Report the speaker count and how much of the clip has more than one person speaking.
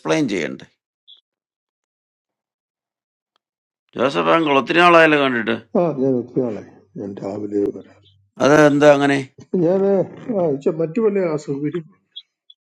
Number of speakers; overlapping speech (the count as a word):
two, no overlap